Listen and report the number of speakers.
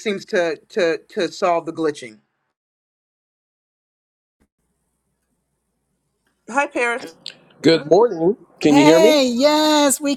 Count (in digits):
3